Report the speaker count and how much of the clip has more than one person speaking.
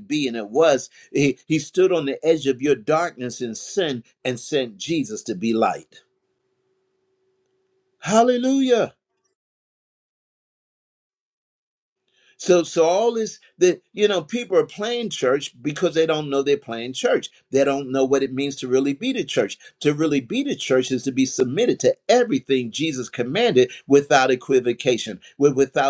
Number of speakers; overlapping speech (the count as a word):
one, no overlap